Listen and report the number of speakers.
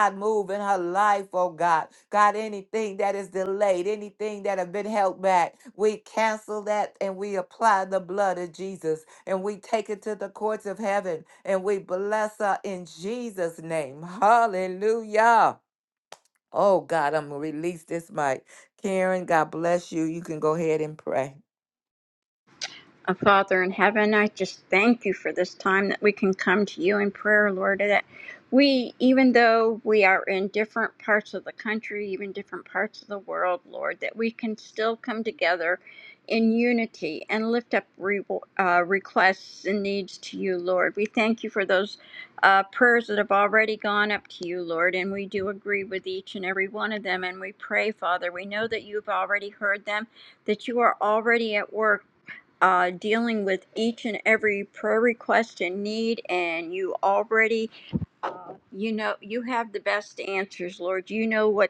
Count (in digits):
2